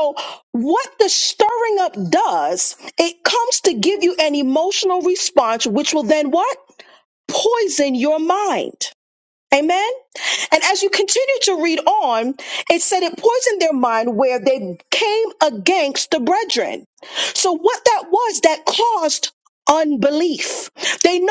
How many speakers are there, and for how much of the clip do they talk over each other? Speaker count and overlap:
1, no overlap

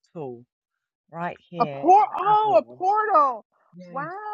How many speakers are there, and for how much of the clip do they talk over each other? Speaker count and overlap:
2, about 31%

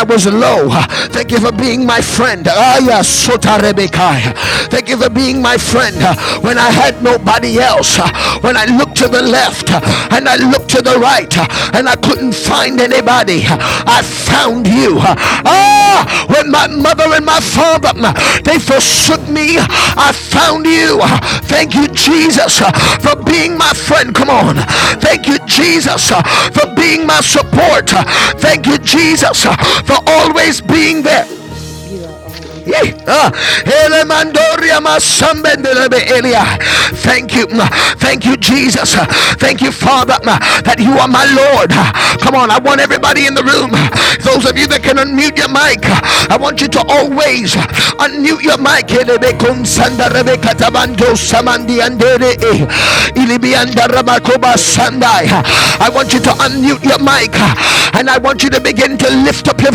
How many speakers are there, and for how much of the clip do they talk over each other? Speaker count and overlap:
2, about 48%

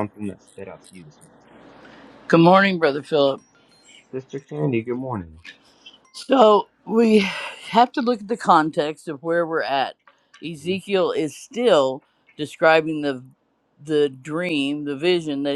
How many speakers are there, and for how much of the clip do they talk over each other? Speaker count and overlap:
2, about 1%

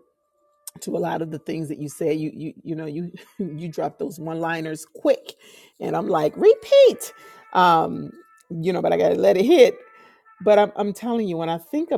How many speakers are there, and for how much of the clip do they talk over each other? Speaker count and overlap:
1, no overlap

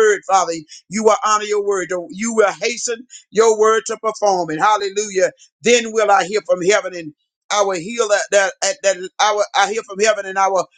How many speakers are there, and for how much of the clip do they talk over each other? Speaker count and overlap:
1, no overlap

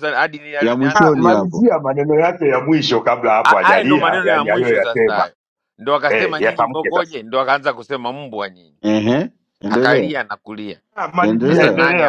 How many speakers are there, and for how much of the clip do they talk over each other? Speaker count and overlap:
3, about 43%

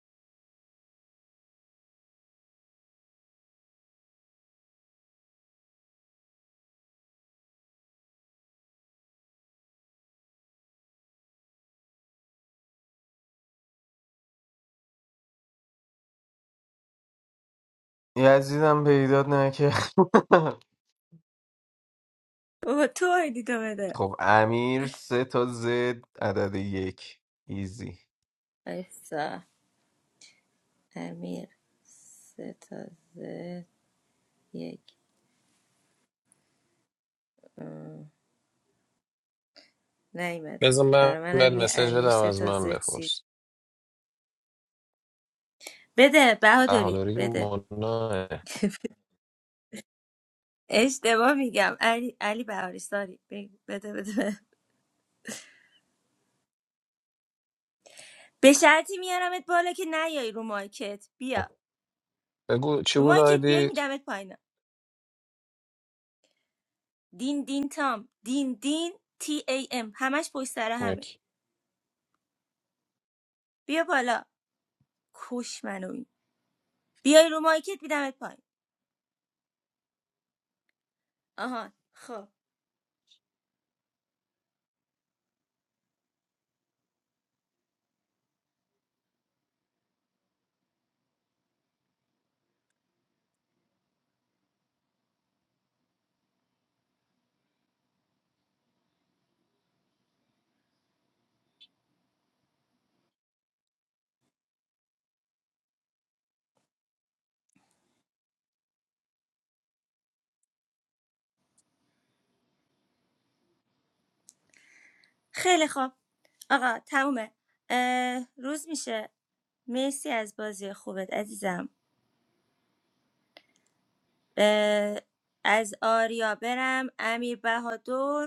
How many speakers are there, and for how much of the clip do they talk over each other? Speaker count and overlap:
3, about 3%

